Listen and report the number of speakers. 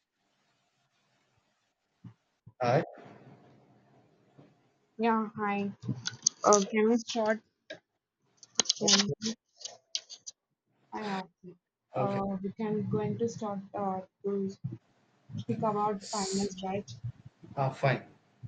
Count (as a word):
two